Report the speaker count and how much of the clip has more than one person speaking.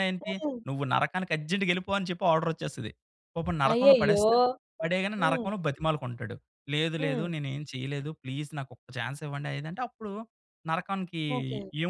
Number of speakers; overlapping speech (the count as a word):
two, about 12%